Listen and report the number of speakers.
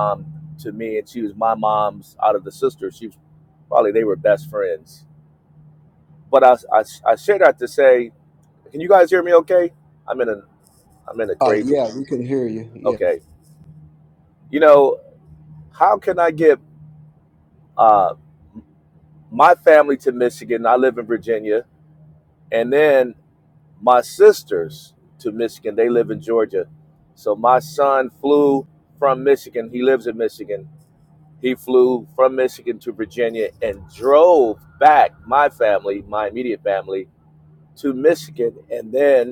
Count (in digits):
2